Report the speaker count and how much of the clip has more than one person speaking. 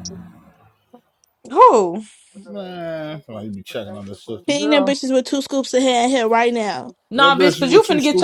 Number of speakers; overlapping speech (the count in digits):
3, about 19%